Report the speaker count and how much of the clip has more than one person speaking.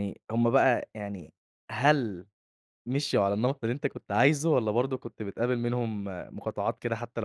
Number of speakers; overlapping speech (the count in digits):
1, no overlap